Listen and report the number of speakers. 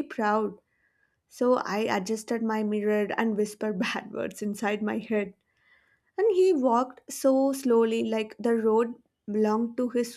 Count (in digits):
1